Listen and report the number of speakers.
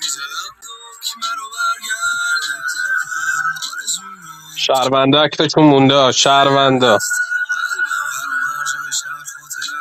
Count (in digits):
2